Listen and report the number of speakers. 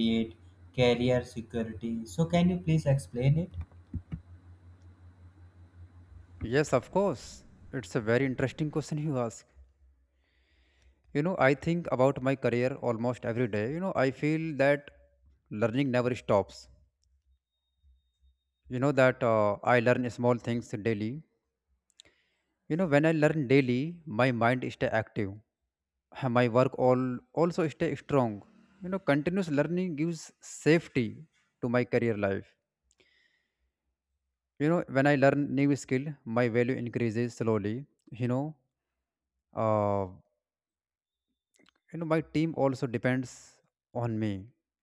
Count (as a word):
two